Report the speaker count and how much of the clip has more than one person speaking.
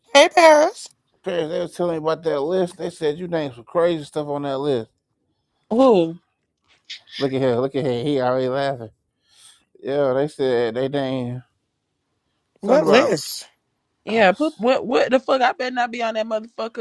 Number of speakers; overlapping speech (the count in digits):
3, about 4%